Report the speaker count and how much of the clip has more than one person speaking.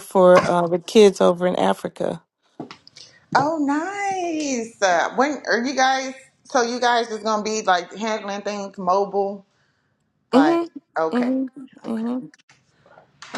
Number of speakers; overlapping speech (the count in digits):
2, about 7%